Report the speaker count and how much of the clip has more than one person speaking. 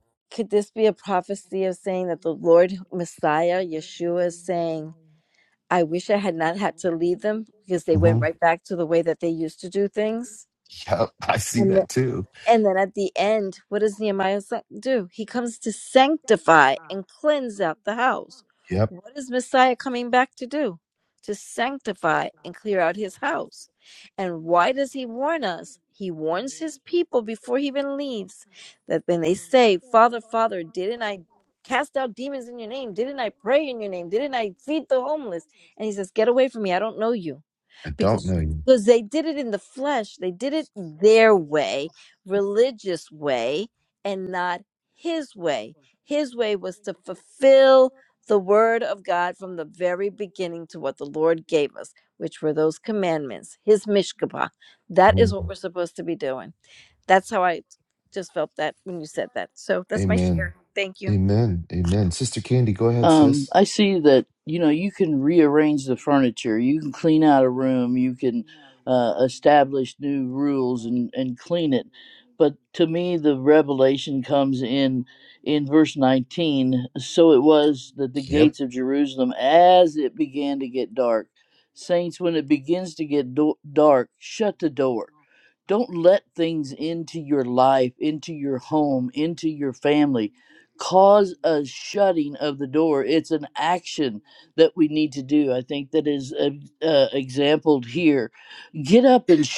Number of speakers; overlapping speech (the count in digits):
3, about 2%